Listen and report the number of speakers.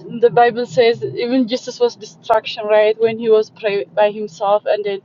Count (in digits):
1